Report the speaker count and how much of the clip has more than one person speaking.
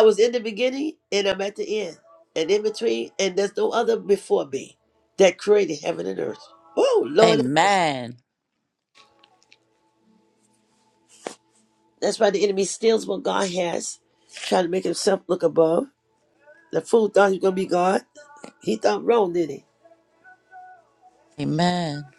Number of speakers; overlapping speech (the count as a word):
two, about 1%